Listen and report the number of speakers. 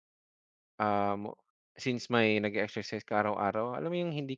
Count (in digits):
1